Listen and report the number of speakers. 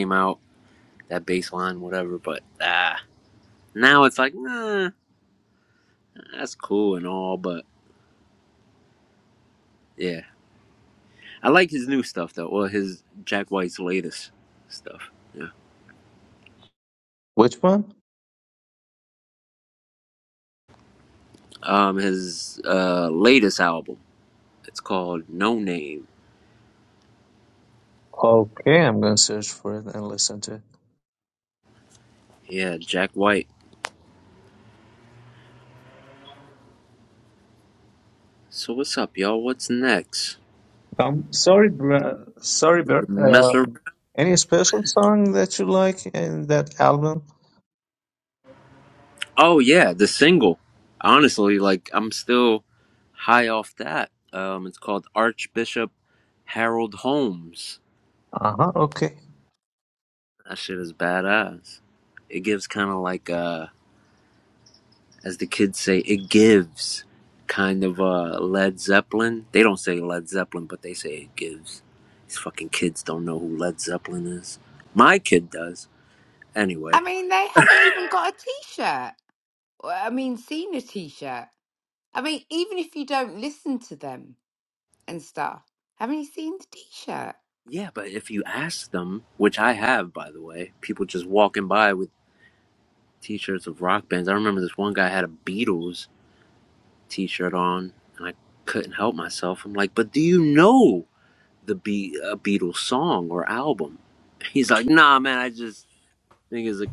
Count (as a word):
three